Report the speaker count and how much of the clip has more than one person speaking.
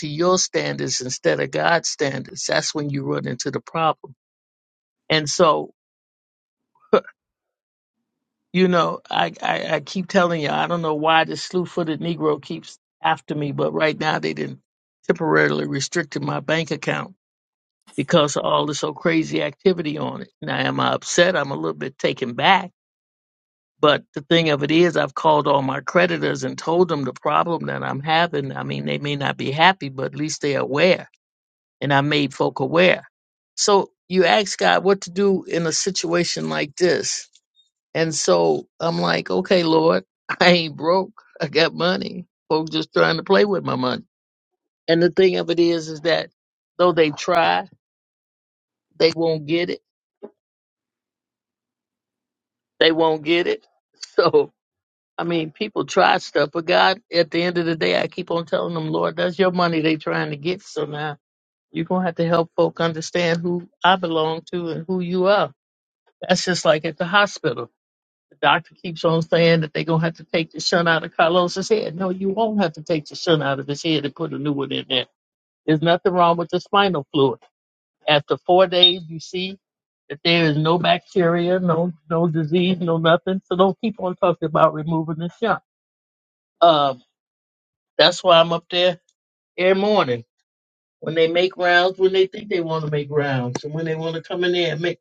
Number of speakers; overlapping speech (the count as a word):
one, no overlap